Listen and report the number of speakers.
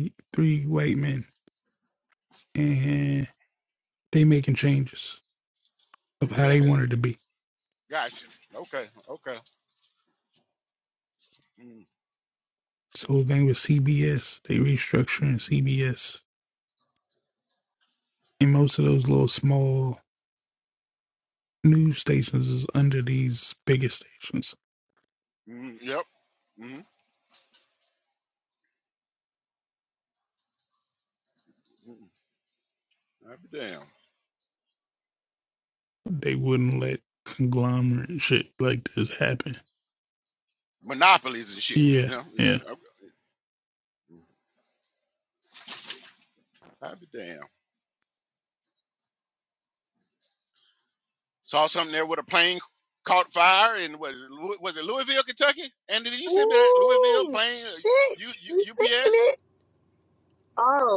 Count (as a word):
three